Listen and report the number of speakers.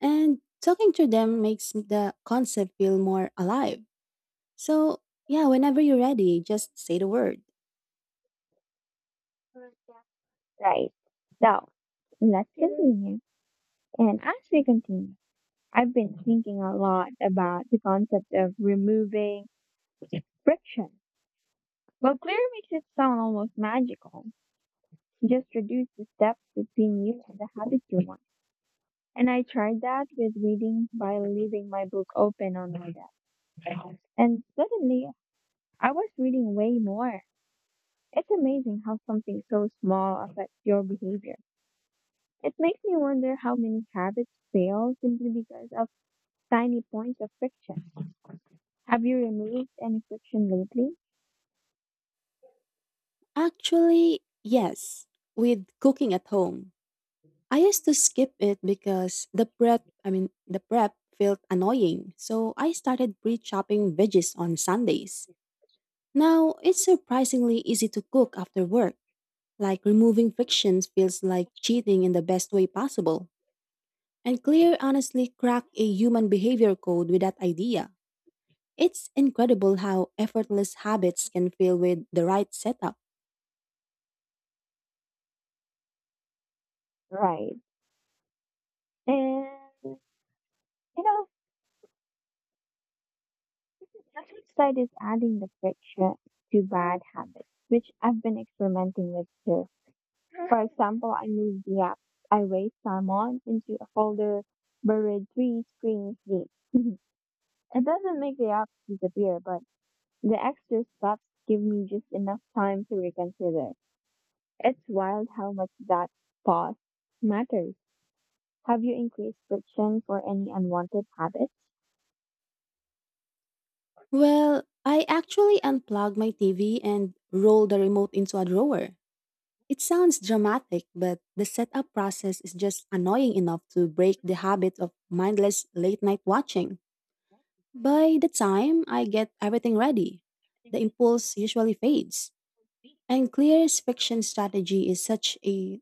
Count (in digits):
2